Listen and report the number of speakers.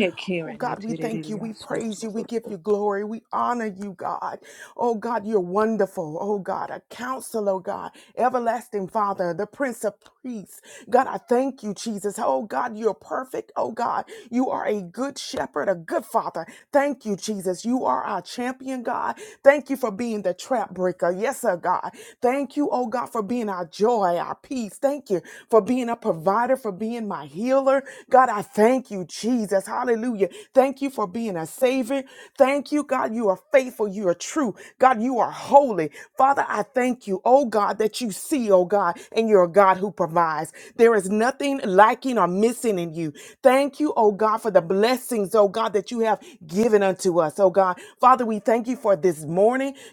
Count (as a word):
two